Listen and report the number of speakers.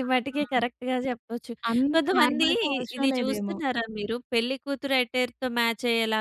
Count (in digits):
2